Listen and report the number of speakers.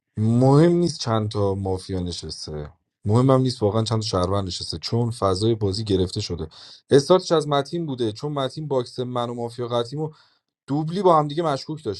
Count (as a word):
one